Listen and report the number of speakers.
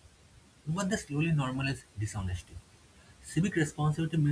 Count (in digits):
1